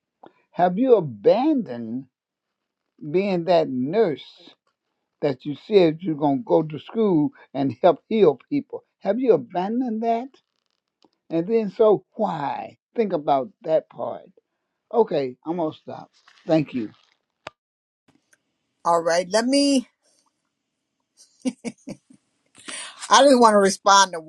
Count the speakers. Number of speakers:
2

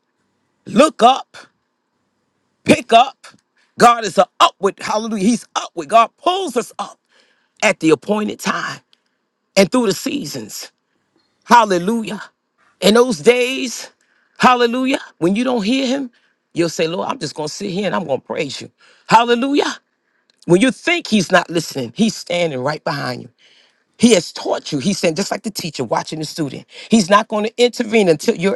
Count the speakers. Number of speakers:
1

